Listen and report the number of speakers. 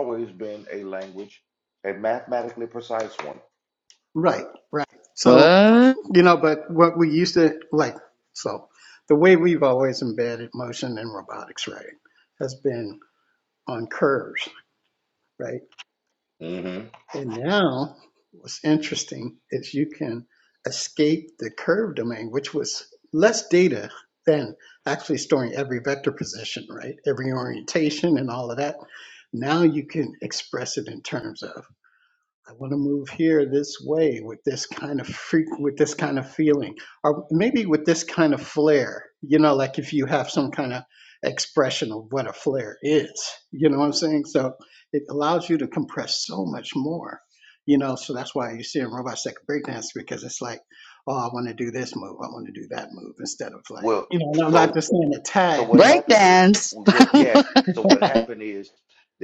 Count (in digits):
3